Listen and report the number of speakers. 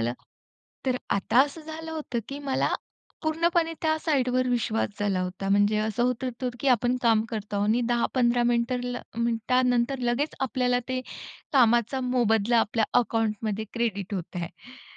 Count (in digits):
1